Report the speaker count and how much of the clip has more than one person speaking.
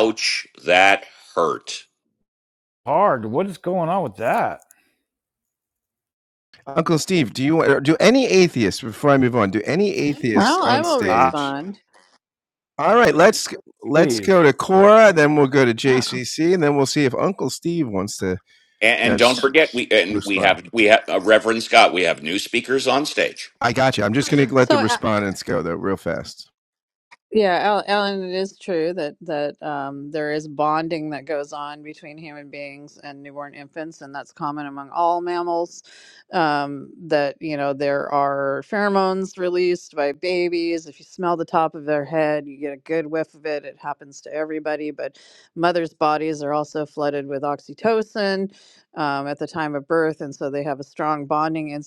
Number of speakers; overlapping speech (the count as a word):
four, about 5%